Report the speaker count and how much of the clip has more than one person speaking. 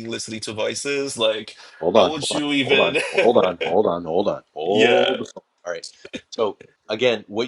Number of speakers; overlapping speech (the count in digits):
2, about 22%